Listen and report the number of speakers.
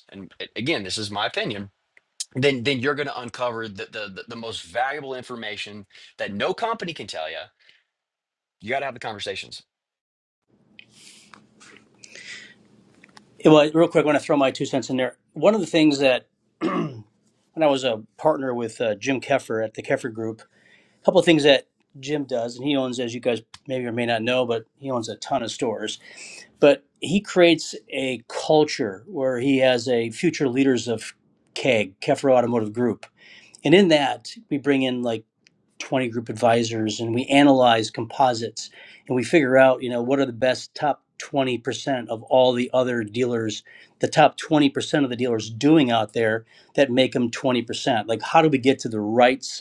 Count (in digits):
2